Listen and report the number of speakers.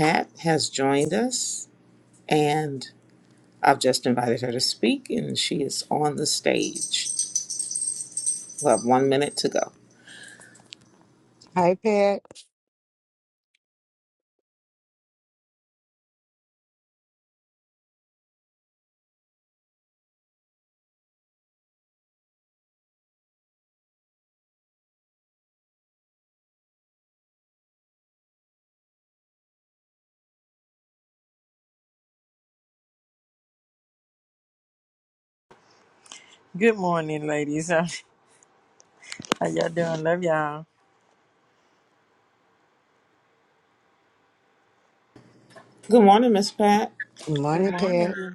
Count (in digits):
3